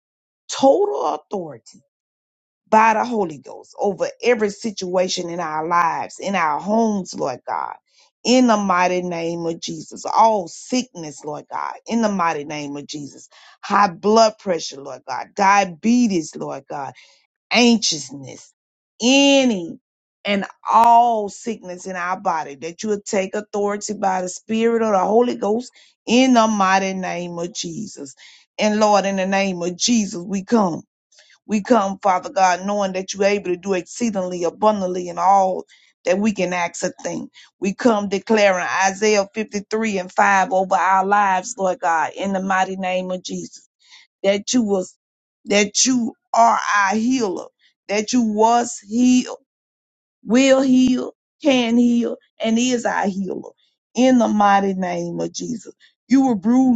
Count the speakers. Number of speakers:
one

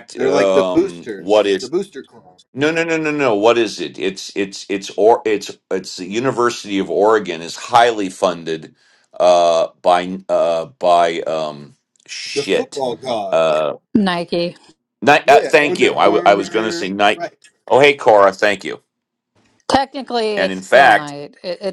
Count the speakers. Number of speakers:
three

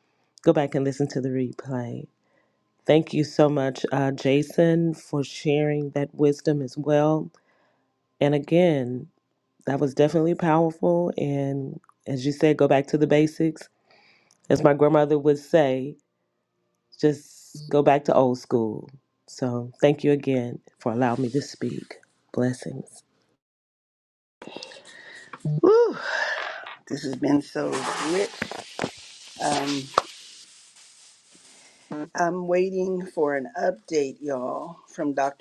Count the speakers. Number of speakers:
two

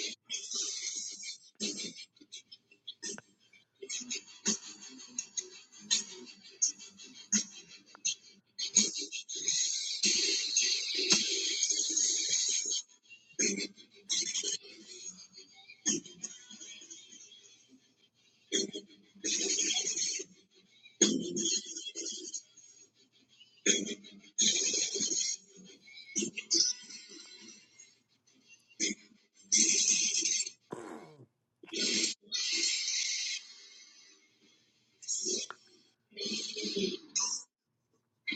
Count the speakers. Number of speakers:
zero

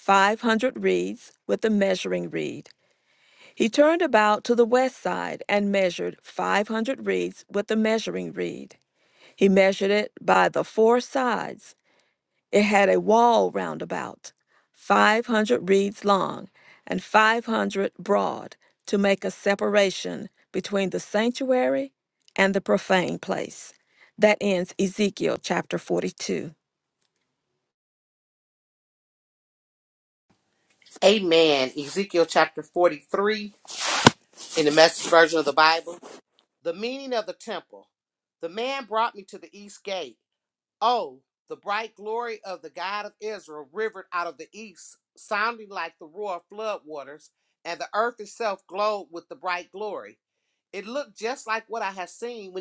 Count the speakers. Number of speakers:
two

